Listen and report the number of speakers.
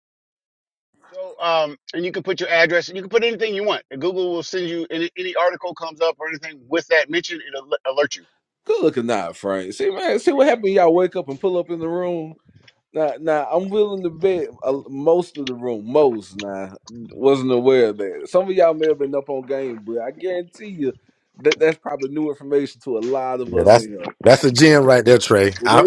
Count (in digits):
3